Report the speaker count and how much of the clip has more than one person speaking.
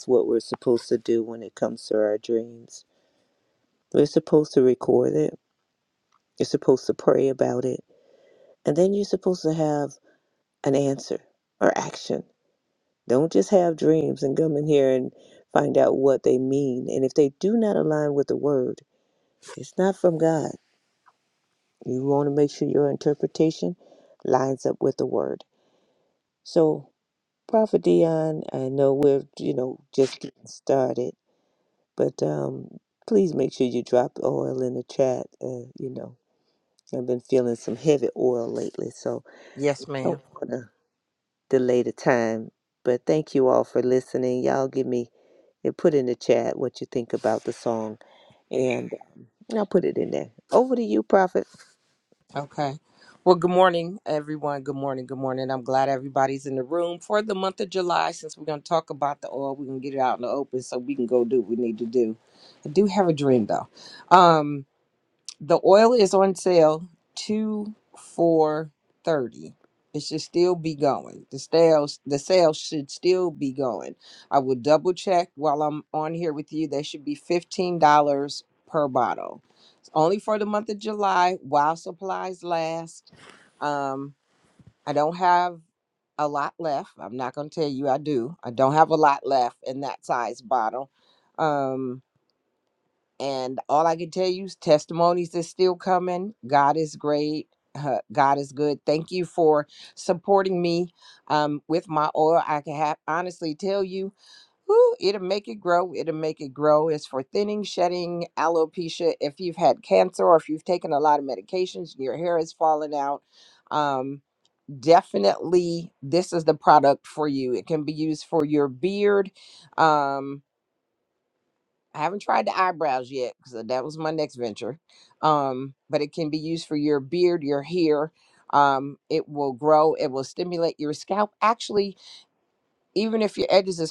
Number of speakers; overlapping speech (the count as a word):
two, under 1%